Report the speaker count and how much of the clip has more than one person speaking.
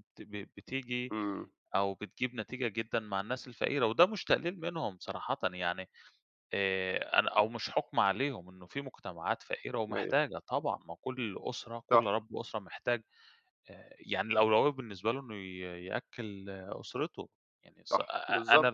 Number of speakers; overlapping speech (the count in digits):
2, about 4%